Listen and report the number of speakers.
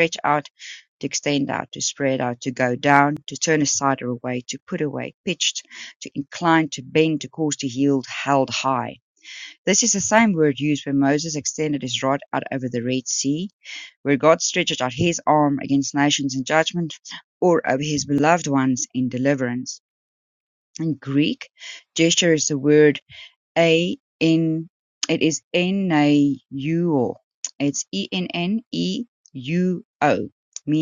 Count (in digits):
1